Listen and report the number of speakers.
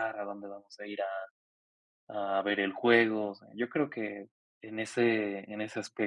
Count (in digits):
1